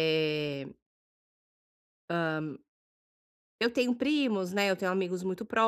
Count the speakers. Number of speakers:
one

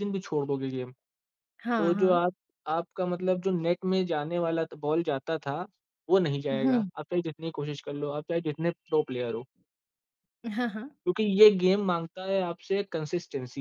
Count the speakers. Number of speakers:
two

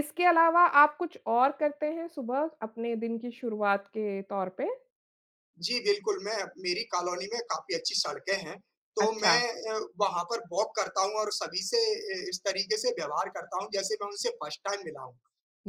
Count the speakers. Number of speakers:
two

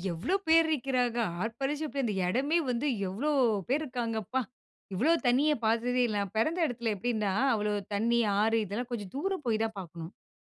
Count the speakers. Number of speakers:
one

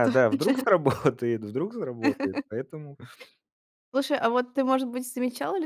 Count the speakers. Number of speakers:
two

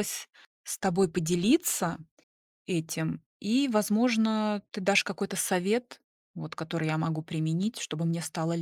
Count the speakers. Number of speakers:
one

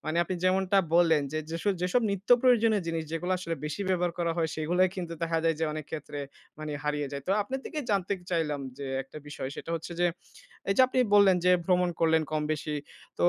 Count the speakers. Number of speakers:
one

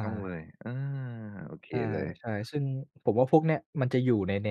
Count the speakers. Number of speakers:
two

